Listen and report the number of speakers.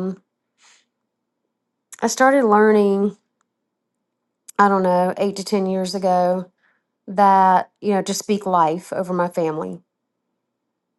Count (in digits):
1